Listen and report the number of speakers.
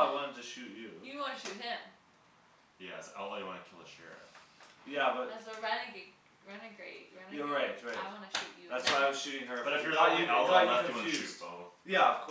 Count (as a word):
three